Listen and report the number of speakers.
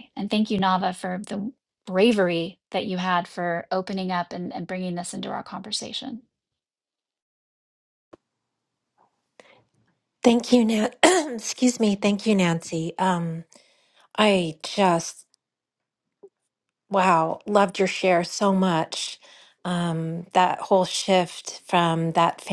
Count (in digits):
2